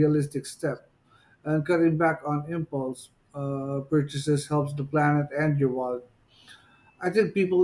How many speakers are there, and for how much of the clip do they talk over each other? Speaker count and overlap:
one, no overlap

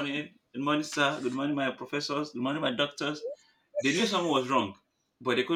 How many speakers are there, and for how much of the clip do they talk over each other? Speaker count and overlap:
one, no overlap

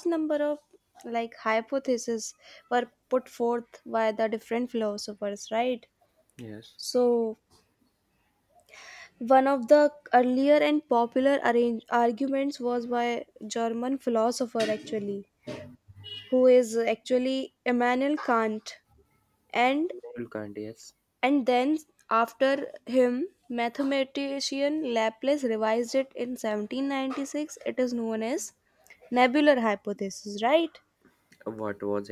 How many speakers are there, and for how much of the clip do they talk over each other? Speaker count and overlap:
two, no overlap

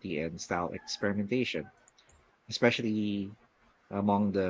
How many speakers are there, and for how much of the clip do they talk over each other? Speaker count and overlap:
one, no overlap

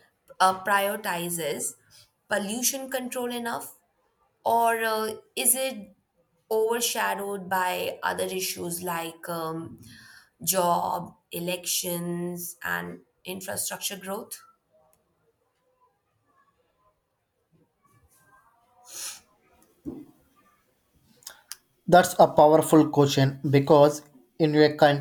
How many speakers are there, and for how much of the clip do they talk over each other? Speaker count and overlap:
two, no overlap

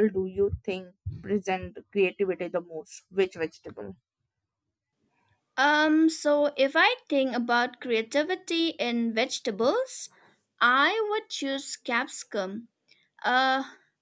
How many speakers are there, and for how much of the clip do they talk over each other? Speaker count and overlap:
two, no overlap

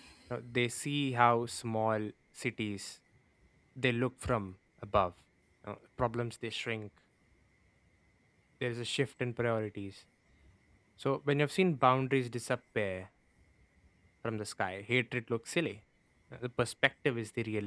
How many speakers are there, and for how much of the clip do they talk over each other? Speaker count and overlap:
one, no overlap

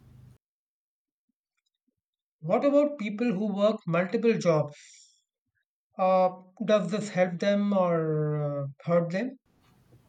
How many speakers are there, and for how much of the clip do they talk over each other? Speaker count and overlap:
one, no overlap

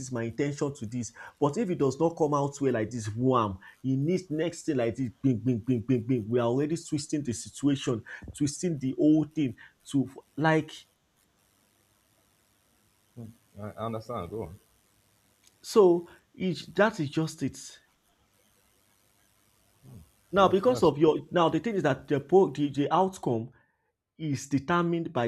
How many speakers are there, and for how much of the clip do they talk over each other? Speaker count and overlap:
two, about 2%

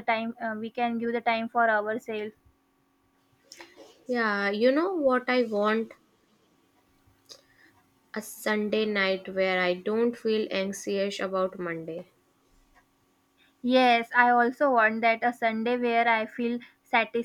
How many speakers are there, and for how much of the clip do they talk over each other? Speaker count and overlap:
two, no overlap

